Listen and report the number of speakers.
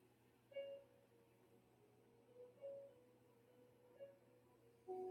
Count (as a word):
zero